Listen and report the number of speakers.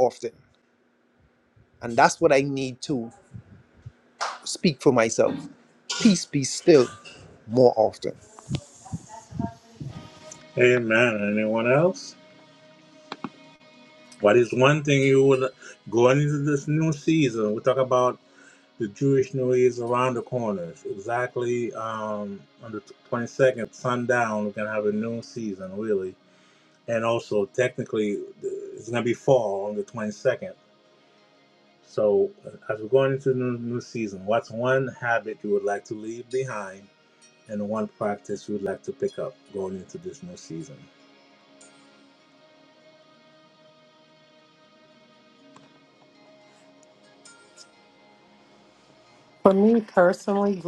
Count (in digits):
3